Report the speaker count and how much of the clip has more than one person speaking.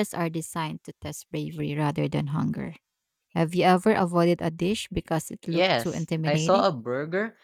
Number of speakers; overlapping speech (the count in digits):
2, about 10%